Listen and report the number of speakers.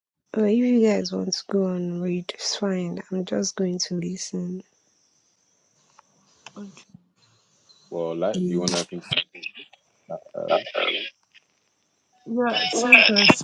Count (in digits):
3